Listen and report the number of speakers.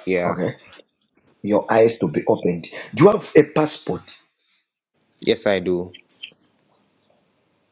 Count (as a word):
two